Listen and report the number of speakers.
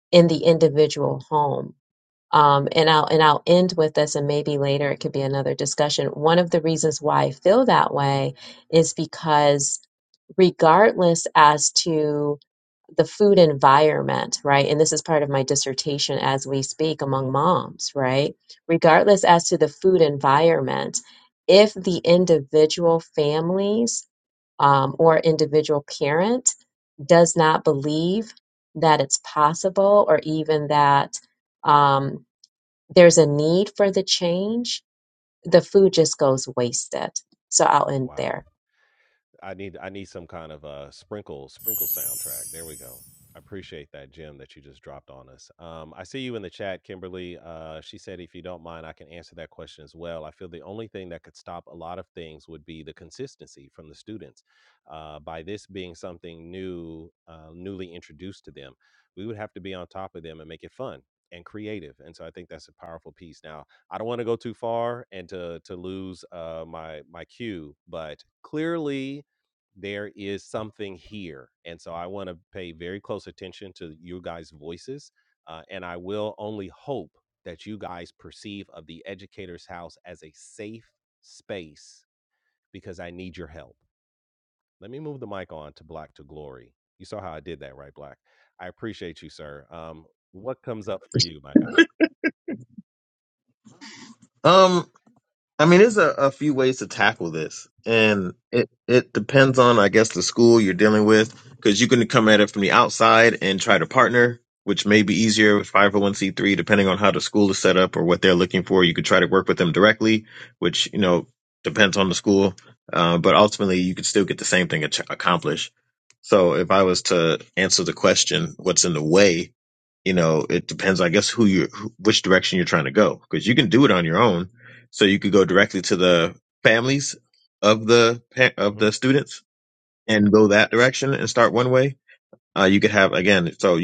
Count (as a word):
three